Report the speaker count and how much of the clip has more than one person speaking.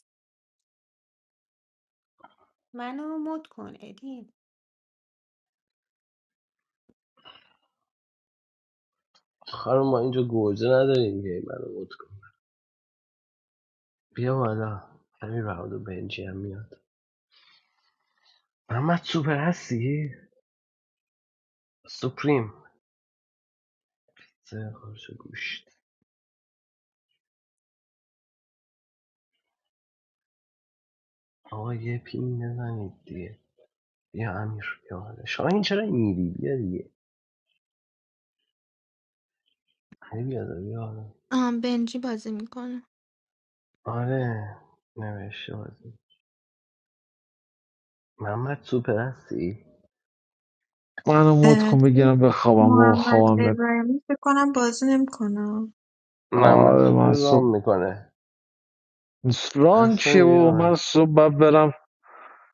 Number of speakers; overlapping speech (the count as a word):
five, about 6%